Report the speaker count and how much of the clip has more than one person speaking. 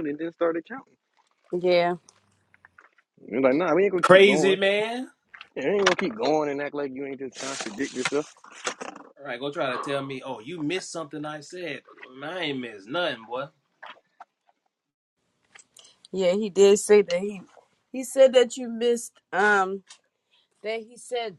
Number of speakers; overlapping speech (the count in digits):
3, about 3%